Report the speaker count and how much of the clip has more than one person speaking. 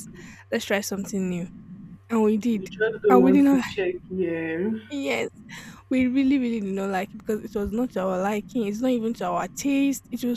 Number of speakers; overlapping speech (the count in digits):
2, about 8%